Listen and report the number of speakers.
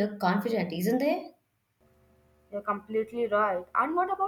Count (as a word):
two